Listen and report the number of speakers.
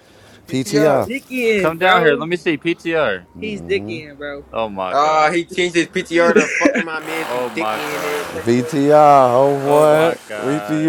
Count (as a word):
four